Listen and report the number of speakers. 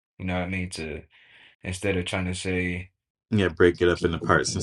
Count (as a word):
two